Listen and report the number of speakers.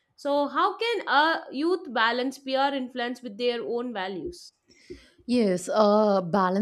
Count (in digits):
2